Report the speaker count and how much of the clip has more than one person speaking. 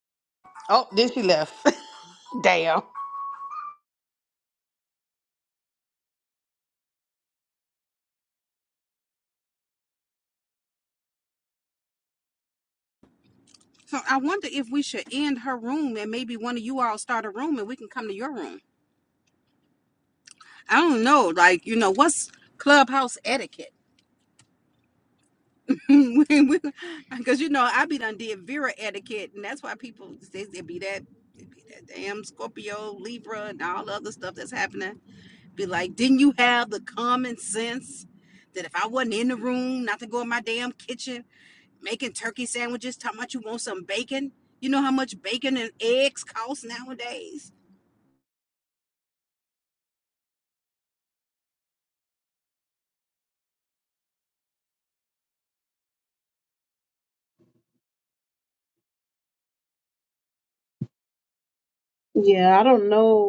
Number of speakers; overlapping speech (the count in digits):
3, no overlap